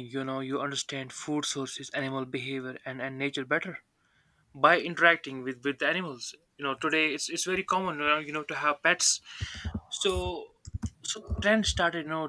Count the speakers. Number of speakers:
1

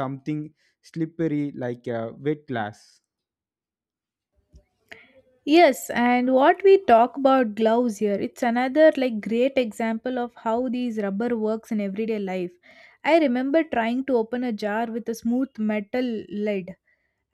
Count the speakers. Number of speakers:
2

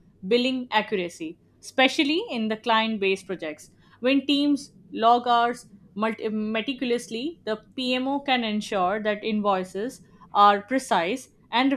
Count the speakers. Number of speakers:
1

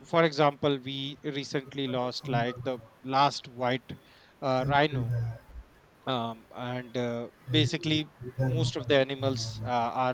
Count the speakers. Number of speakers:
1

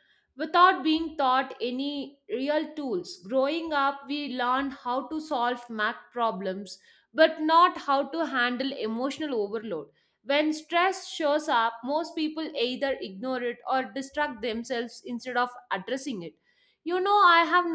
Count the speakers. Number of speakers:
1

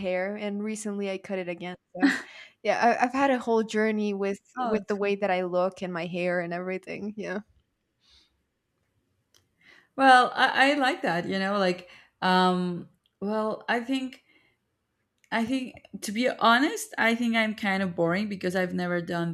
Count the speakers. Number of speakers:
2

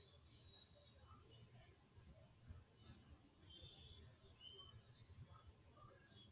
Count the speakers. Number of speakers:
0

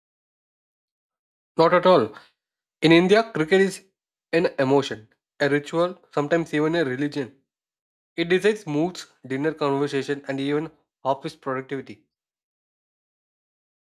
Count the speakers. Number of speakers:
1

